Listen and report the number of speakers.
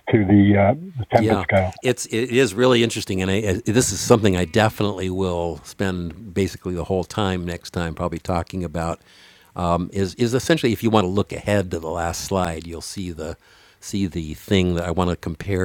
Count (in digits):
2